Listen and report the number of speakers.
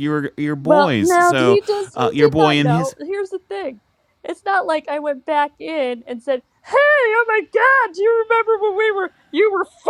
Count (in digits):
2